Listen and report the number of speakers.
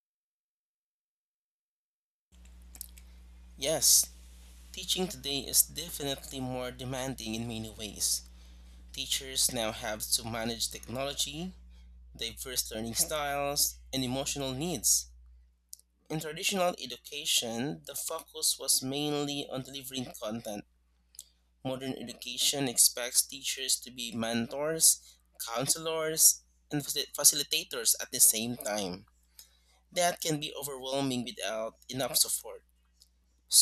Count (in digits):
1